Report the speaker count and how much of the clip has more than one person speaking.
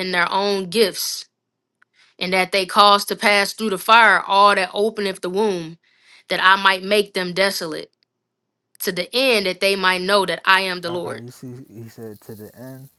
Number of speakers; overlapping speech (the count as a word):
two, about 3%